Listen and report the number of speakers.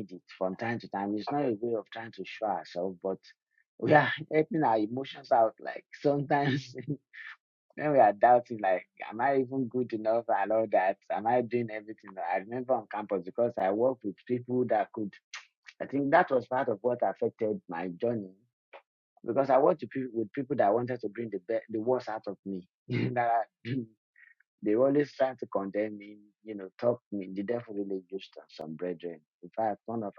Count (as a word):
one